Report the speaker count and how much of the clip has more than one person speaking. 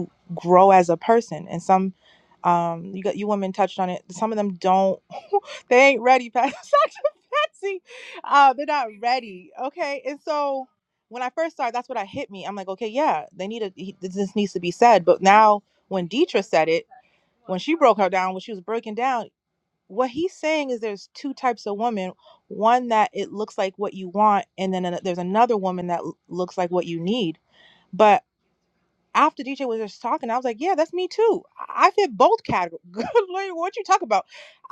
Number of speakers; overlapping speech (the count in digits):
1, no overlap